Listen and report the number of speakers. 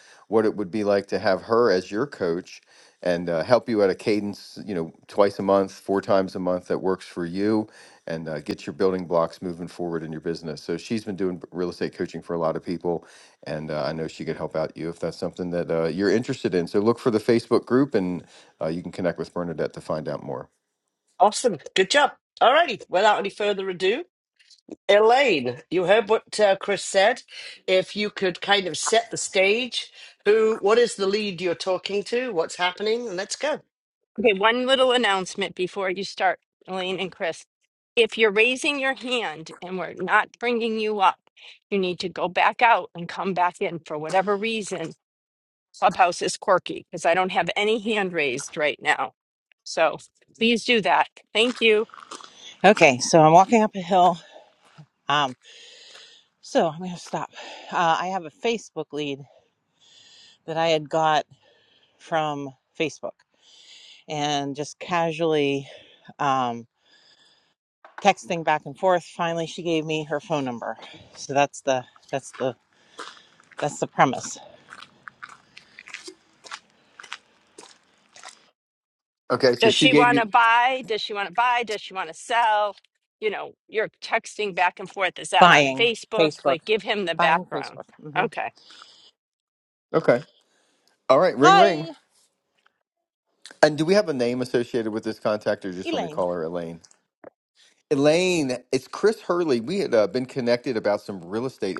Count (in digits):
4